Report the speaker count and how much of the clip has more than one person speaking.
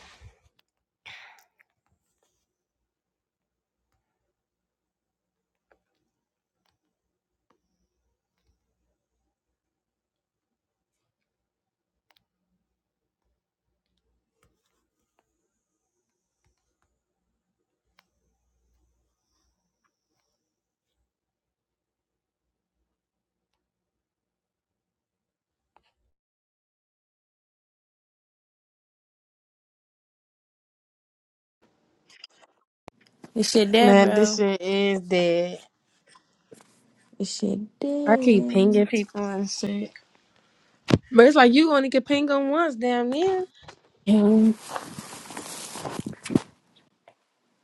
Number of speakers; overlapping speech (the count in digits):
2, about 3%